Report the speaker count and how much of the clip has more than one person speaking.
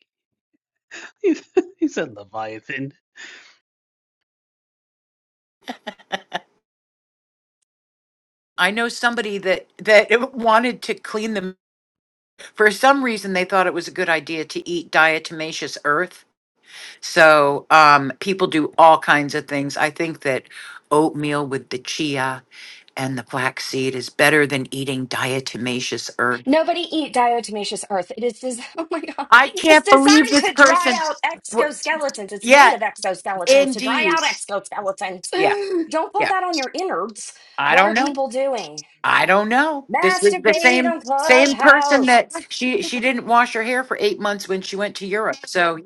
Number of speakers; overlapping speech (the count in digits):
3, about 12%